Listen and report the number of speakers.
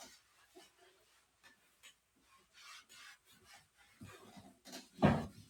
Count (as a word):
zero